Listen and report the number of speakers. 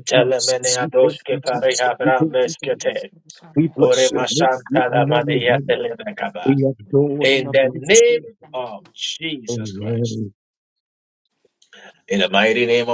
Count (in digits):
2